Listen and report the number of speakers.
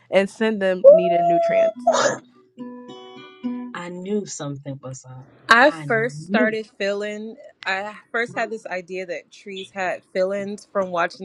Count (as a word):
three